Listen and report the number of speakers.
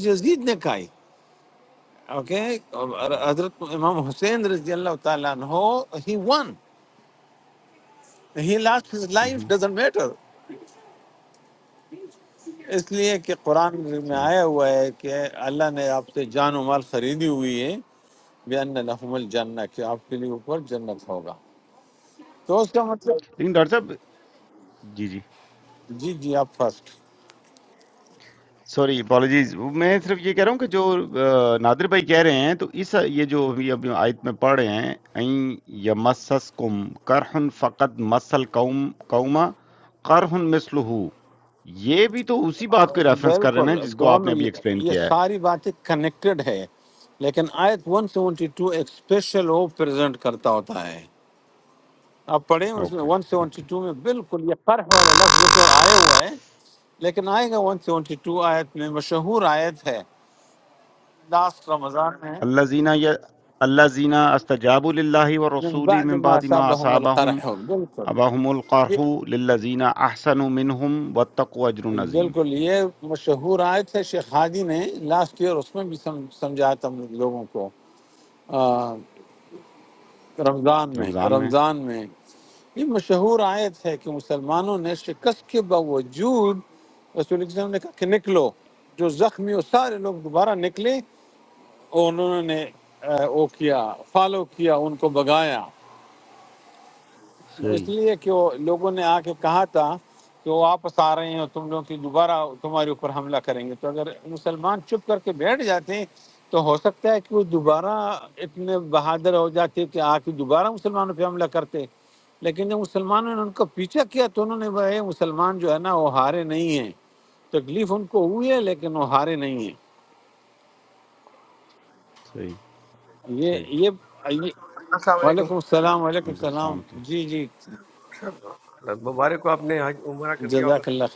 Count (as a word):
three